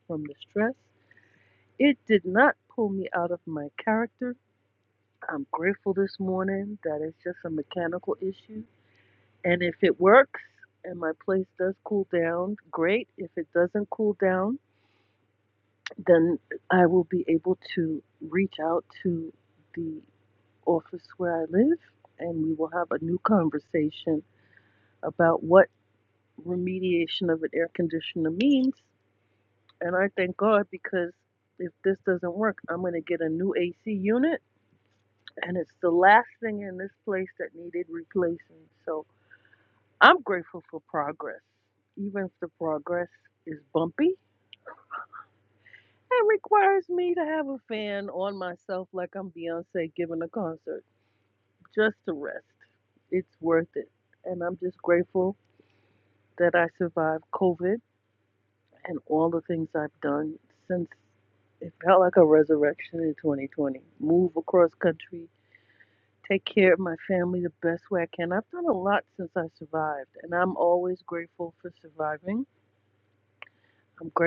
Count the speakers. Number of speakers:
1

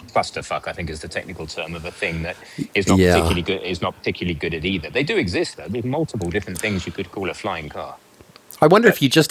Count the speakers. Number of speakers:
2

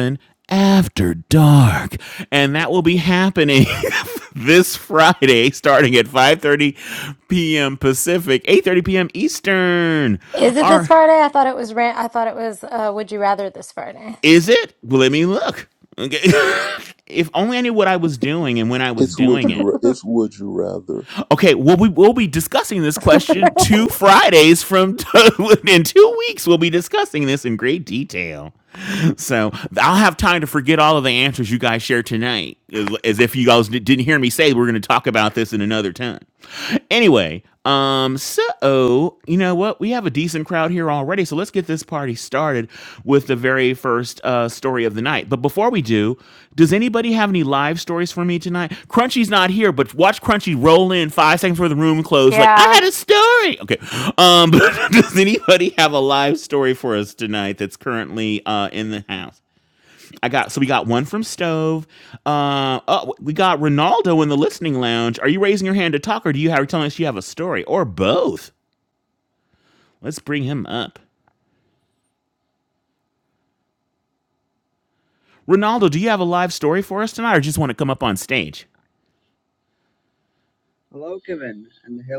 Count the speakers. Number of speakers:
4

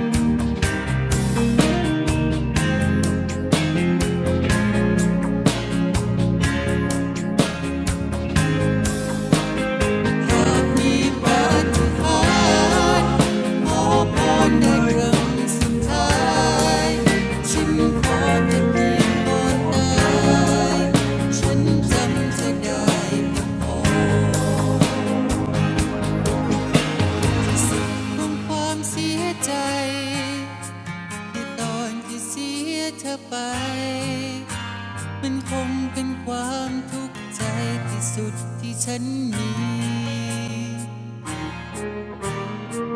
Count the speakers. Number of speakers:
1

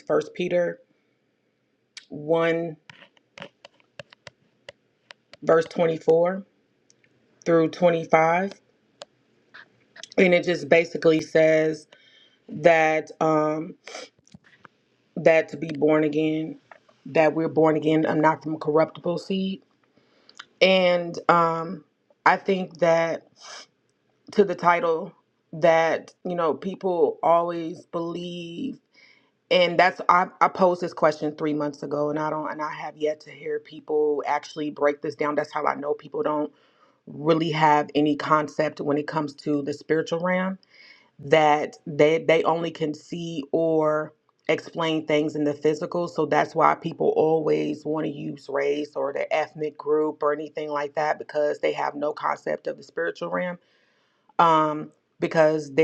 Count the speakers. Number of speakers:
1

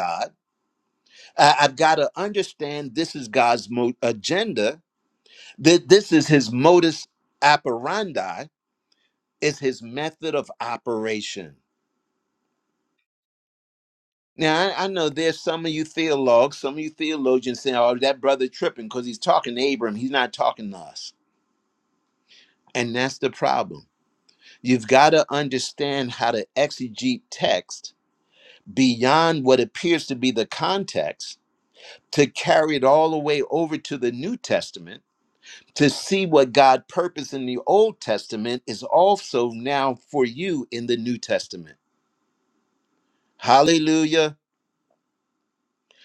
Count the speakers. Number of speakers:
1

